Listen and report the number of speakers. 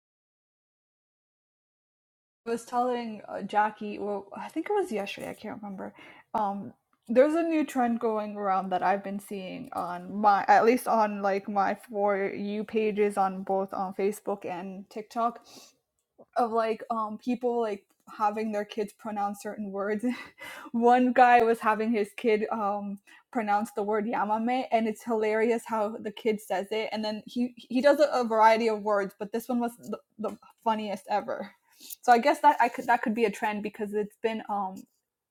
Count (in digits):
1